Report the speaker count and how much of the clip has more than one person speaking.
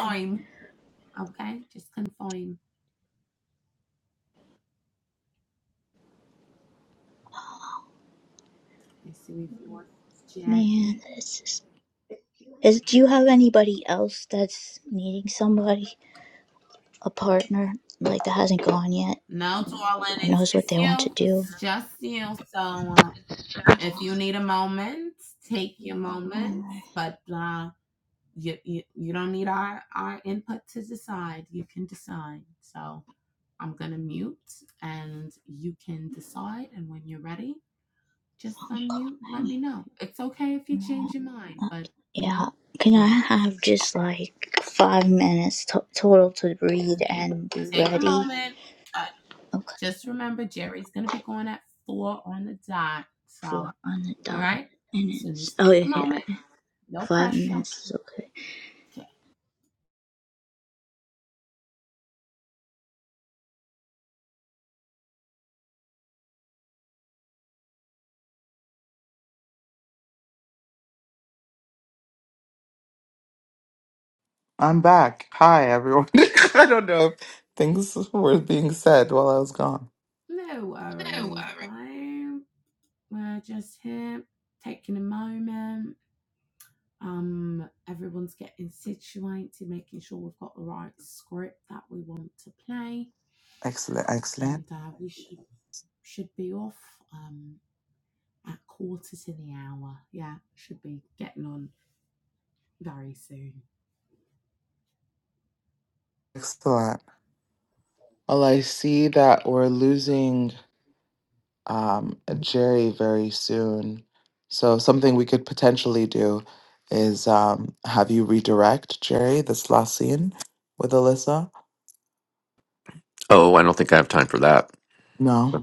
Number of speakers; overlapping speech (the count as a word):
four, about 5%